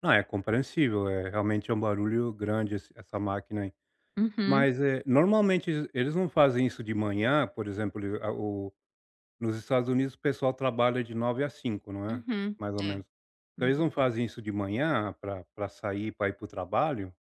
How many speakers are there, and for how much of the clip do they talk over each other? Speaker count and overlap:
2, about 6%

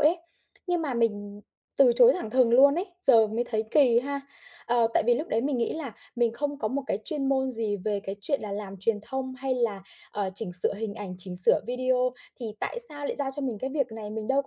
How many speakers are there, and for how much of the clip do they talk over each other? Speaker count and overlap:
1, no overlap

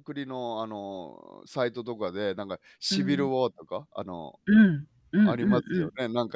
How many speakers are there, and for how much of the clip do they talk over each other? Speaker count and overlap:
2, about 17%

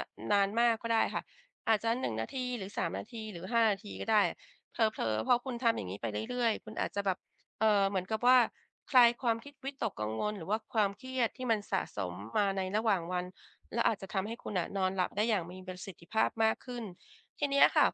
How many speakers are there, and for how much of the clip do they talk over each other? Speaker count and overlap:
1, no overlap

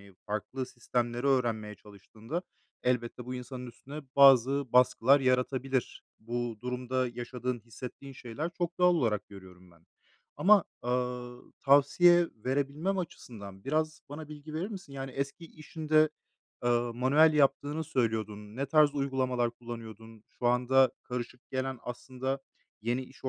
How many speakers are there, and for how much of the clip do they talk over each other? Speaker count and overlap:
1, no overlap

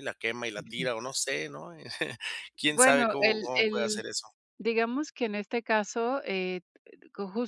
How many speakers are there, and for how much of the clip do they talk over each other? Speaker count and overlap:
2, about 22%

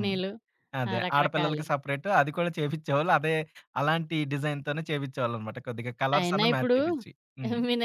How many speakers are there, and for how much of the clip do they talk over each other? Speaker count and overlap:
2, about 20%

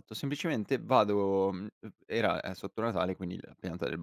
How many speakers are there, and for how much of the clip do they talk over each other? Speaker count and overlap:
1, no overlap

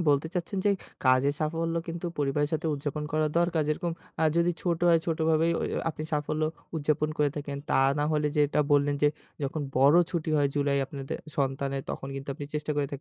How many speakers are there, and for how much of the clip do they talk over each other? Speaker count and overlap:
1, no overlap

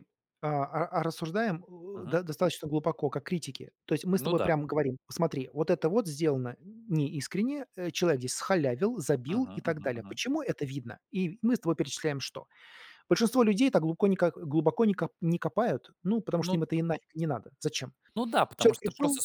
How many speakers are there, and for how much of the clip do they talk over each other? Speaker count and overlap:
2, about 12%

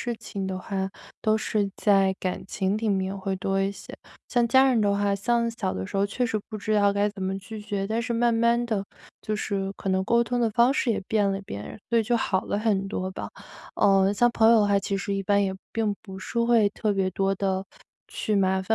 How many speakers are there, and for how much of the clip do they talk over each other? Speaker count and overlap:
1, no overlap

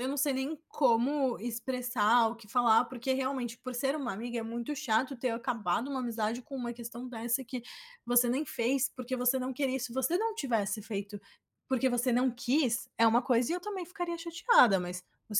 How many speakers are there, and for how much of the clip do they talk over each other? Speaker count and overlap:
1, no overlap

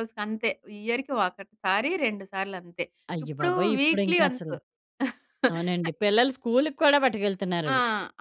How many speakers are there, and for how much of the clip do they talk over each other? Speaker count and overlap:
2, about 18%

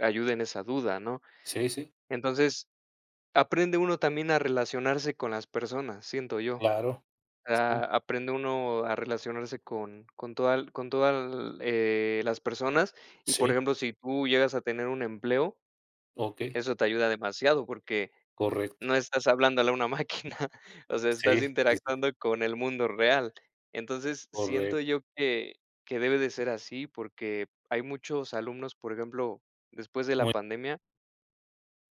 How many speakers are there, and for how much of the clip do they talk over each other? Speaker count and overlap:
2, about 5%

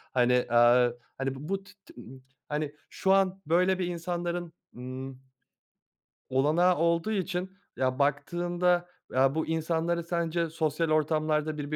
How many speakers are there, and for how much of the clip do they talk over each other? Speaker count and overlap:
1, no overlap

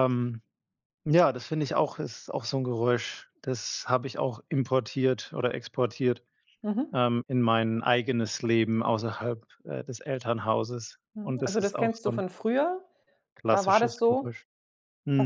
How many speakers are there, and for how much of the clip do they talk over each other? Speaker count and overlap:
2, about 12%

